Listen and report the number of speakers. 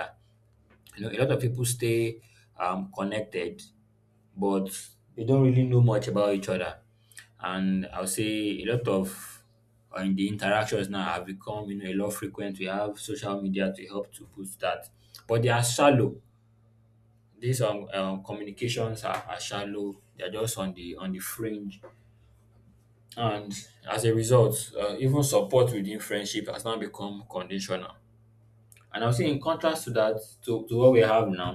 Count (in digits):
1